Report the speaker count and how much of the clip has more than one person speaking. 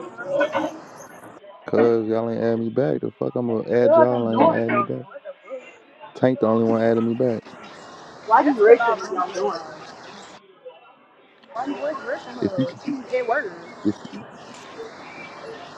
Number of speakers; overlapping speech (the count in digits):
3, about 19%